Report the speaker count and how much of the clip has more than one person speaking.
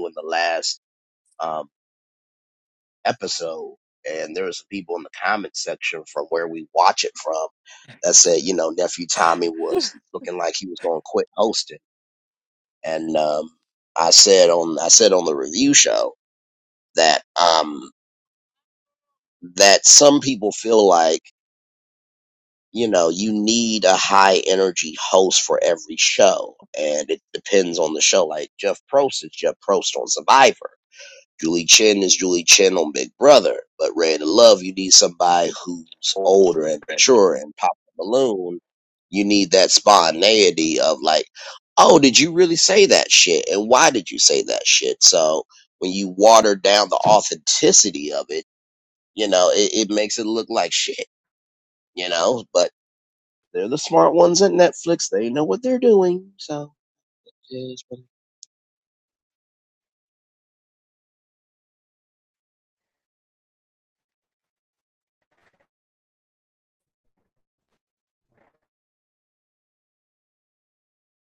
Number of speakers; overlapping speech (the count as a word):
one, no overlap